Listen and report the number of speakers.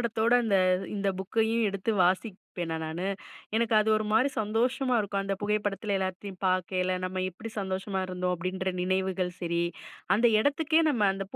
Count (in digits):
1